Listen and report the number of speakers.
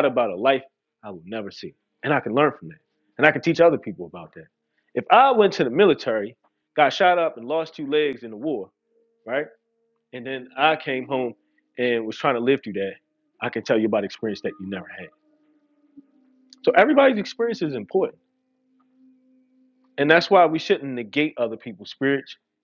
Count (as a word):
one